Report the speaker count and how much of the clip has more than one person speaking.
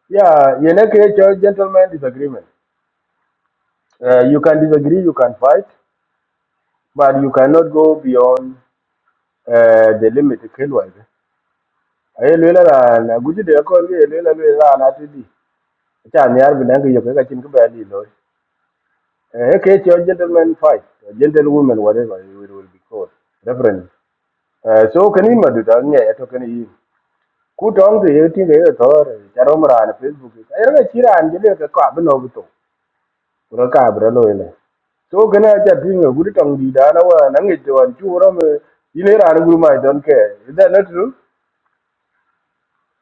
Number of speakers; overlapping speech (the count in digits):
1, no overlap